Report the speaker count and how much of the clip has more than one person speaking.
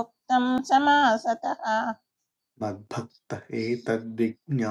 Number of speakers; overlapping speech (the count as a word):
two, no overlap